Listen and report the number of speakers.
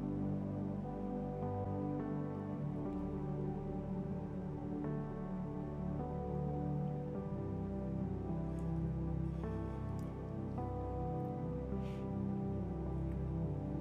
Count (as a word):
zero